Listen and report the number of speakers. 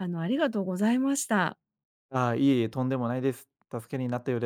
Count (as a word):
two